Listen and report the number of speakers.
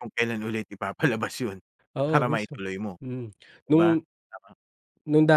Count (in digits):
2